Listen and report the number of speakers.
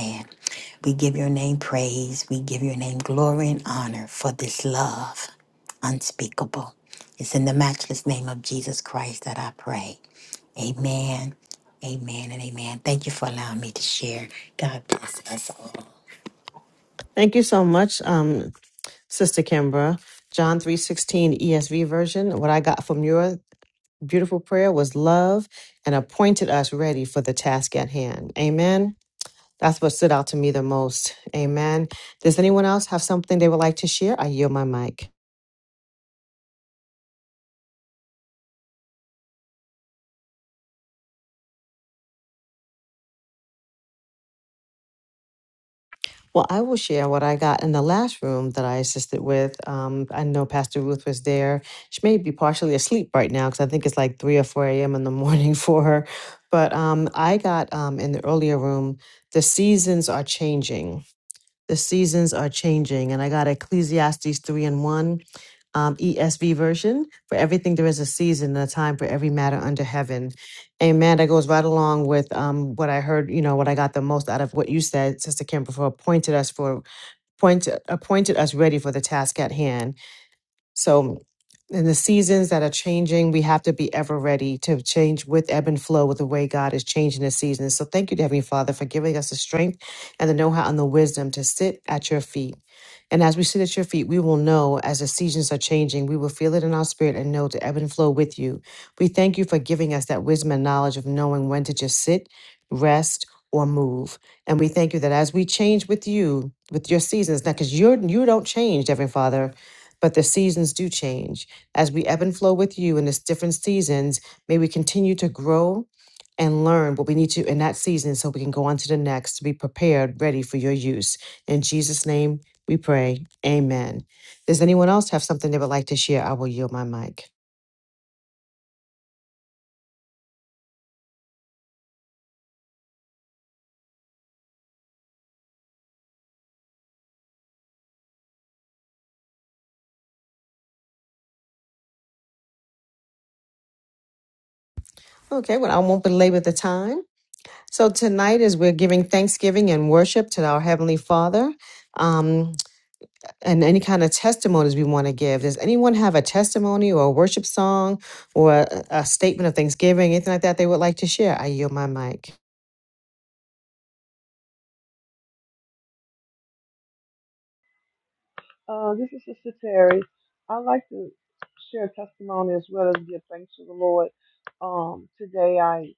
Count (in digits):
3